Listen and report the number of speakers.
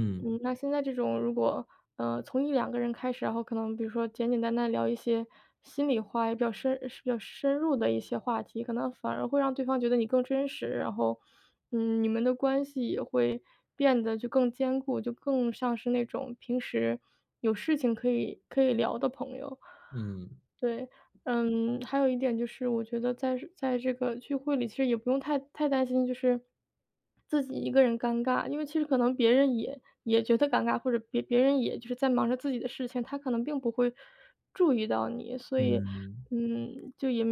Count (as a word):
two